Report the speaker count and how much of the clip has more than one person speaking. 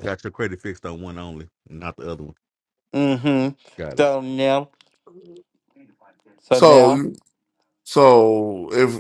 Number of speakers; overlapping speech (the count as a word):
three, about 6%